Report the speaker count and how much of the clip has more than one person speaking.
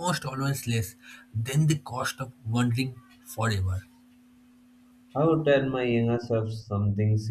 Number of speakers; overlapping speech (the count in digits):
2, no overlap